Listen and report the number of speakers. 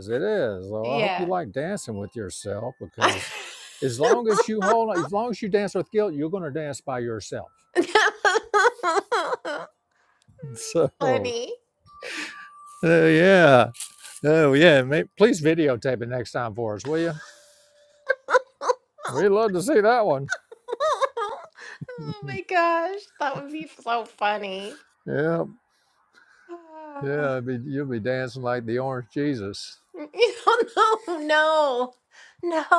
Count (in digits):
2